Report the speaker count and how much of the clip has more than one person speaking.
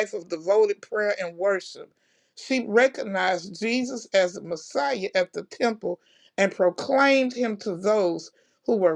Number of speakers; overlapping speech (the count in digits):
1, no overlap